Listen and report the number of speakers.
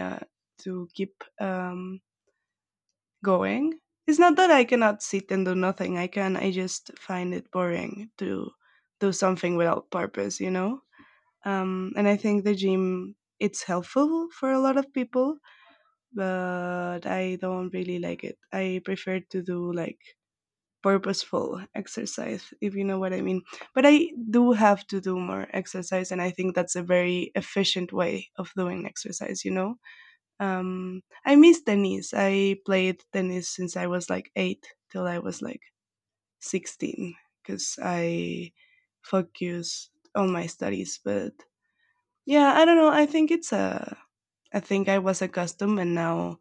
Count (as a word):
one